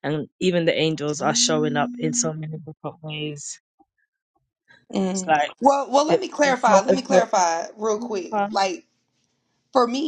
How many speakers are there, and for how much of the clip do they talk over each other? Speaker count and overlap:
two, about 17%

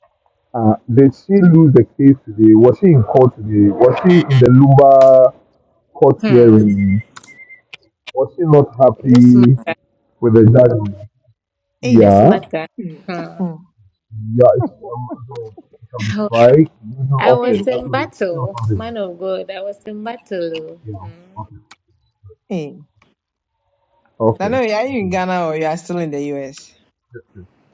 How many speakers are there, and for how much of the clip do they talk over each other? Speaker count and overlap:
three, about 13%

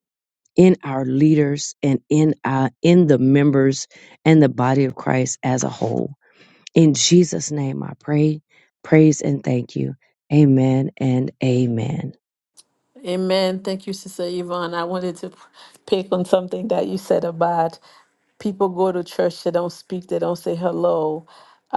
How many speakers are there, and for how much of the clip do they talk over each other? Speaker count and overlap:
two, no overlap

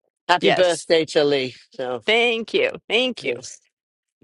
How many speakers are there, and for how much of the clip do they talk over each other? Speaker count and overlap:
two, about 9%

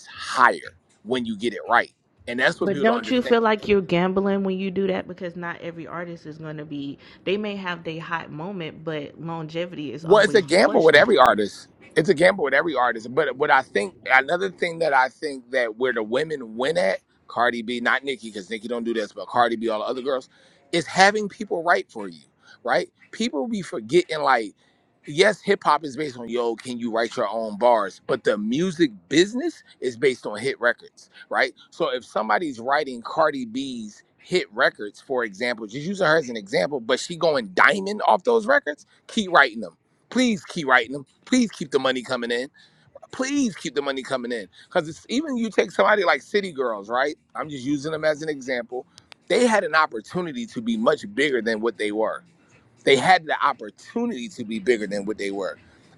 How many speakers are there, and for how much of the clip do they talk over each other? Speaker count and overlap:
two, about 3%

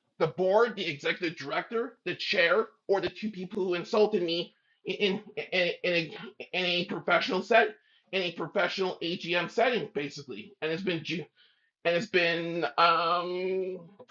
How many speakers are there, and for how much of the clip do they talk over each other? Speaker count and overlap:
one, no overlap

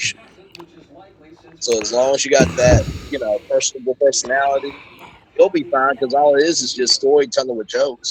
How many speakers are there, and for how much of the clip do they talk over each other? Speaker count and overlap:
one, no overlap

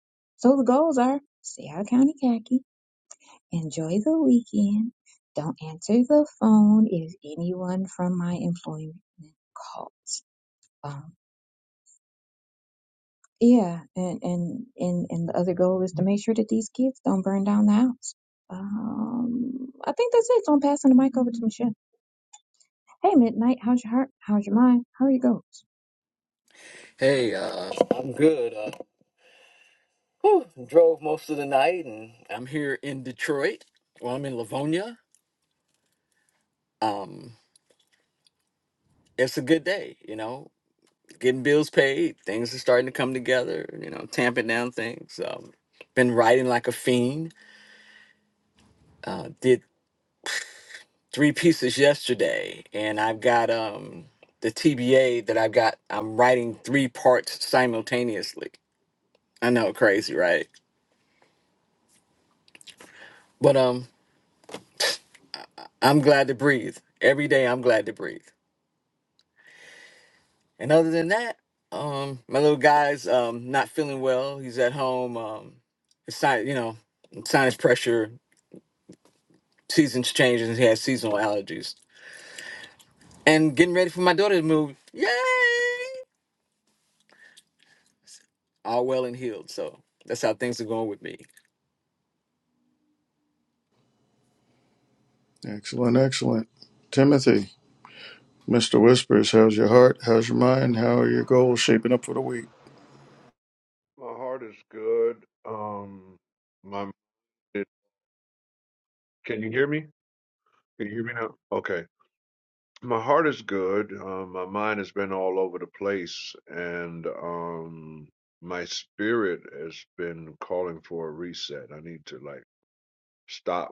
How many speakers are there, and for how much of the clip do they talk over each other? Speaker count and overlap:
four, no overlap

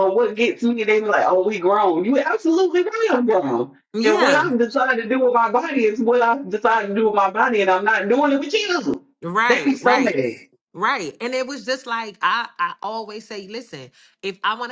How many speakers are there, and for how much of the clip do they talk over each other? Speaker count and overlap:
two, about 7%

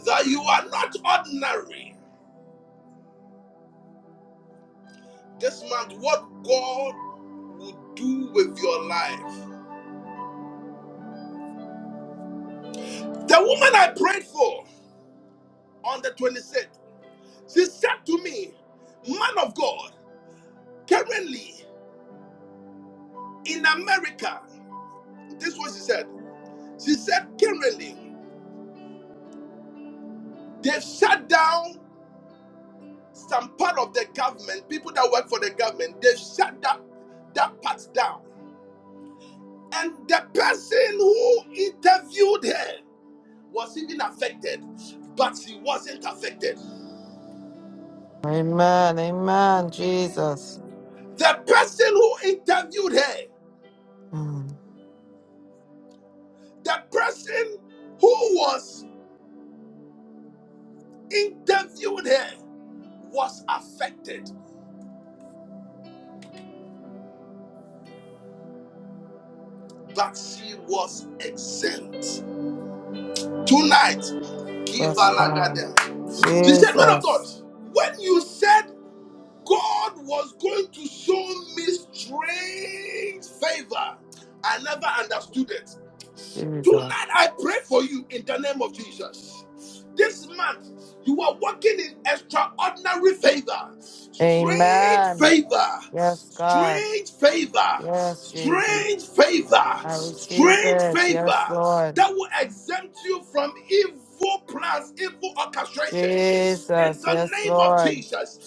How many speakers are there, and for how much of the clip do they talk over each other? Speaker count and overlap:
two, about 5%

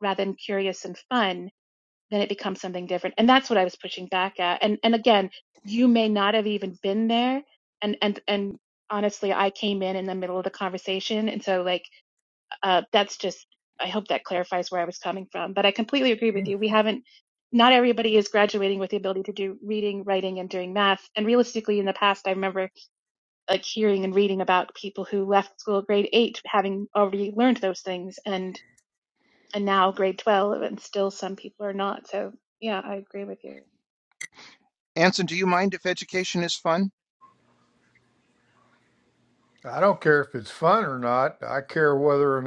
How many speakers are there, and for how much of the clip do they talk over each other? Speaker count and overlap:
three, no overlap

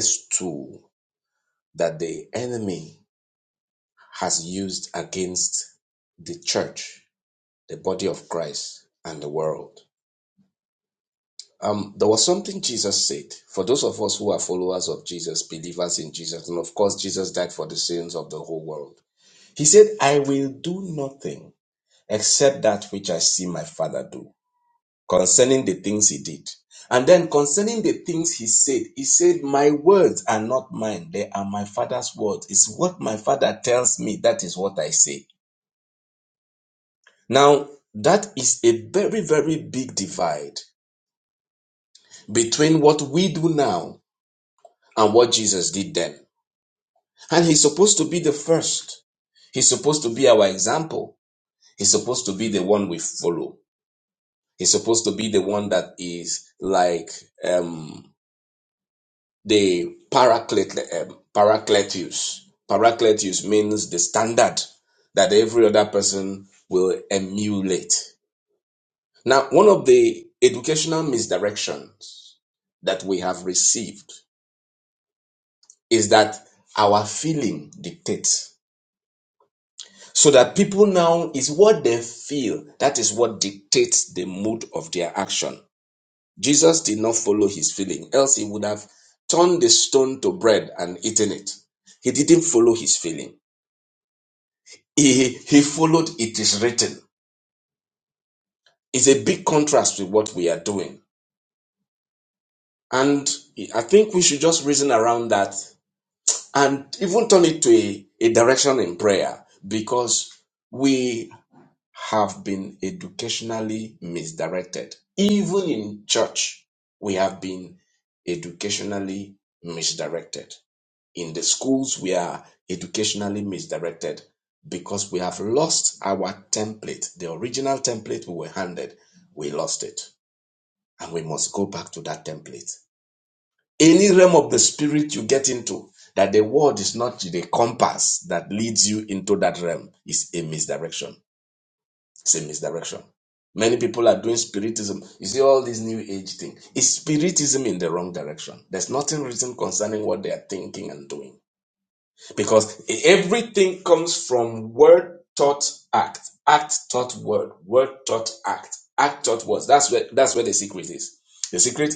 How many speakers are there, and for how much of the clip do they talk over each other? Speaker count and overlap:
one, no overlap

